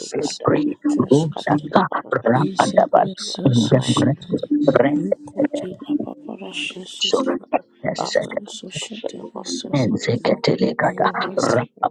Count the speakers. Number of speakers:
three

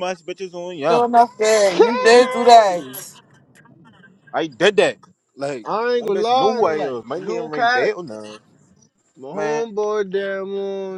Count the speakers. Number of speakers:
three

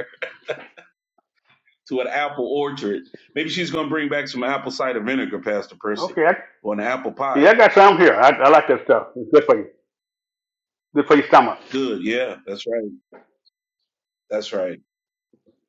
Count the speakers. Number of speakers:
two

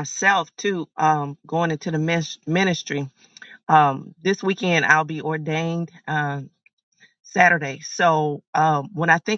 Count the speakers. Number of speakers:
one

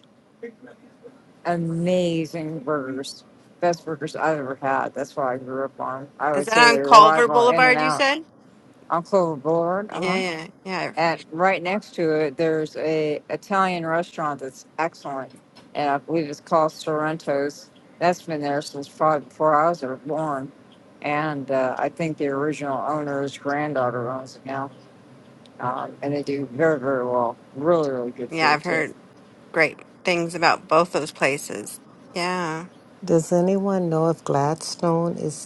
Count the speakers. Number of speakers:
three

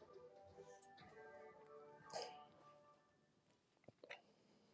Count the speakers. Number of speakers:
zero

